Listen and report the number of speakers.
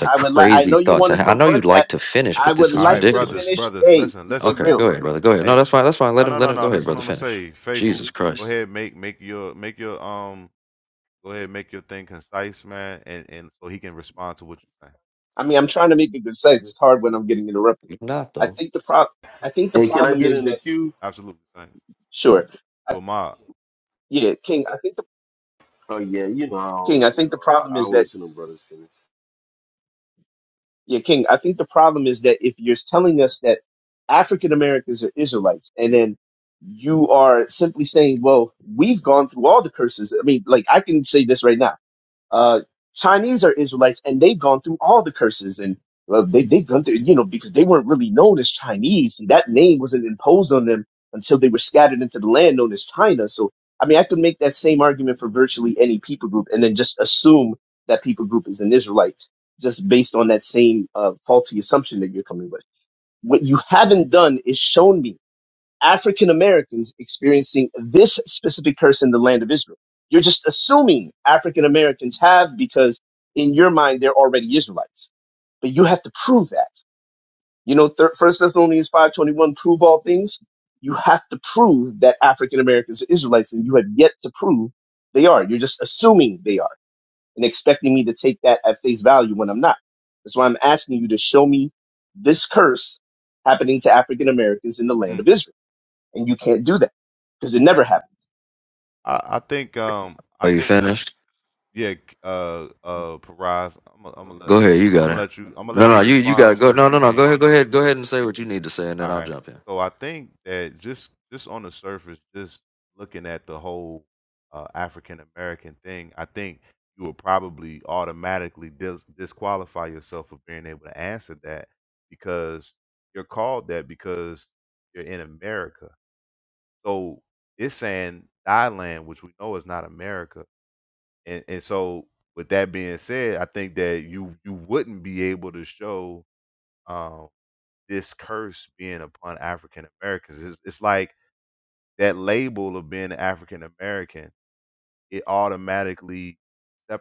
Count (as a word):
four